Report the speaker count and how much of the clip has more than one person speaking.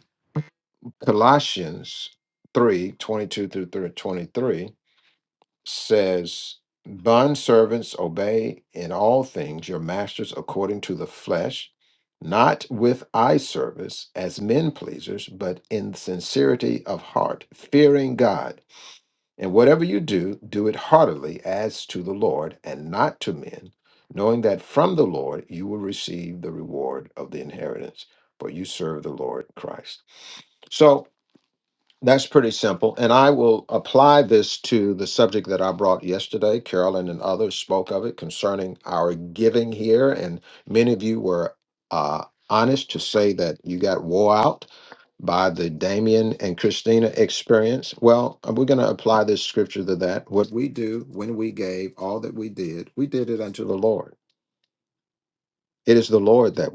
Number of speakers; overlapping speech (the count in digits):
1, no overlap